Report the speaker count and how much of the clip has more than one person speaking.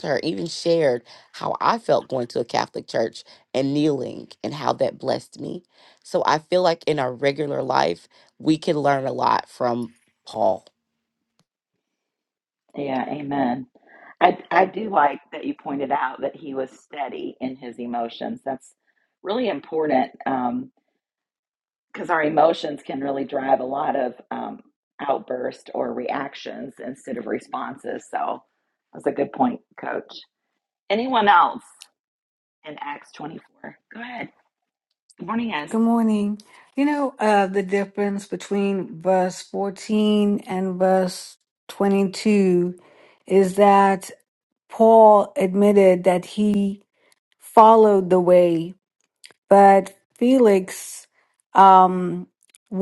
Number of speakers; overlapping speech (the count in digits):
3, under 1%